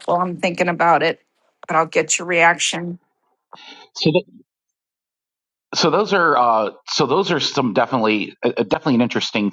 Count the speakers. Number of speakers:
two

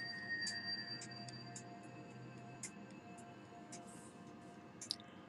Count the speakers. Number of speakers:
zero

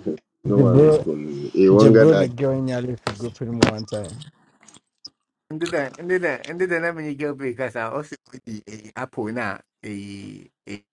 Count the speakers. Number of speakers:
three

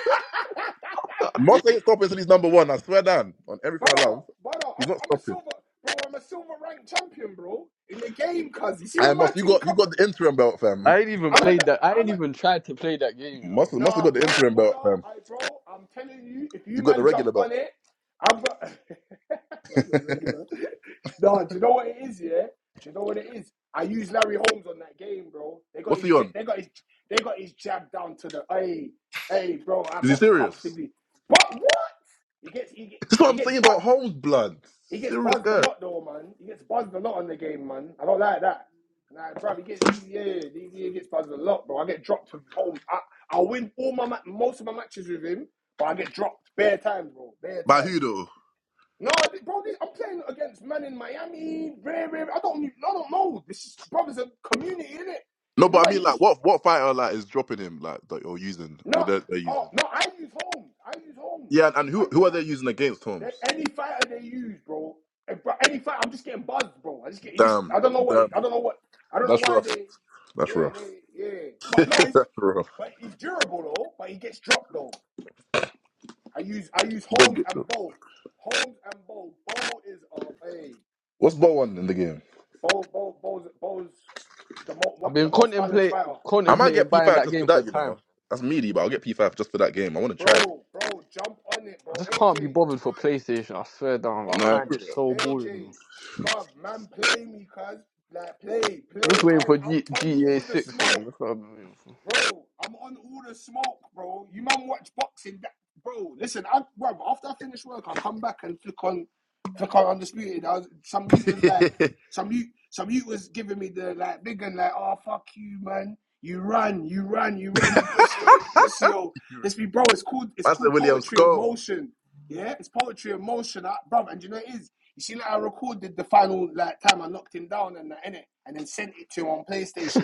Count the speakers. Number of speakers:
three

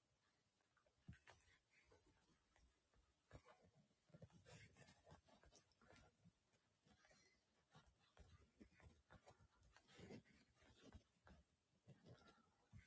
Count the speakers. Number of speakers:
zero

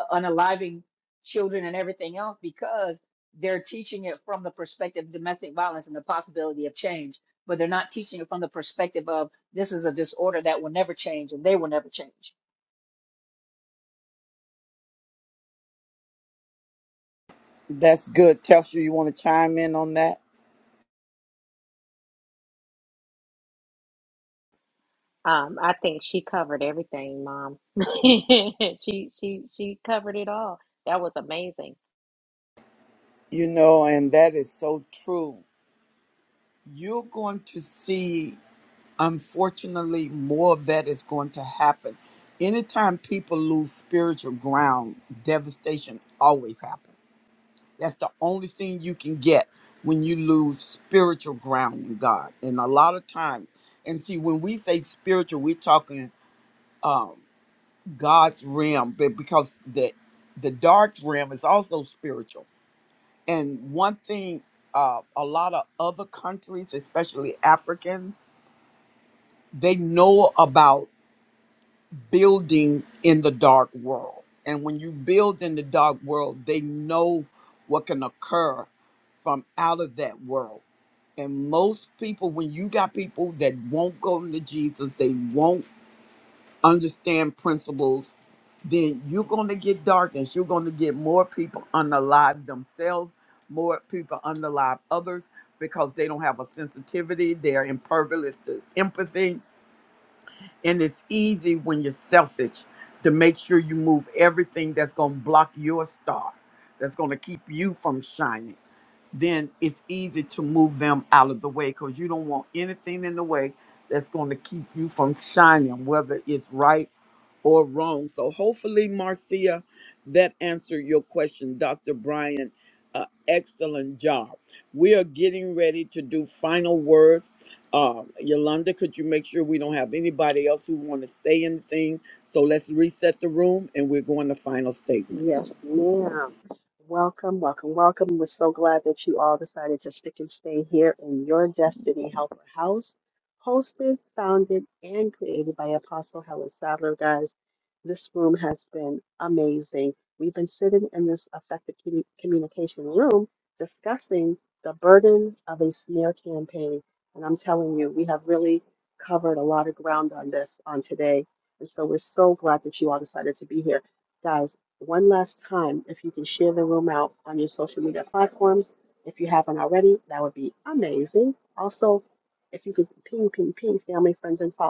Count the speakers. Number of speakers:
four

